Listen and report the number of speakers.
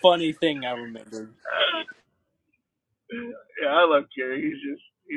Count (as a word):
two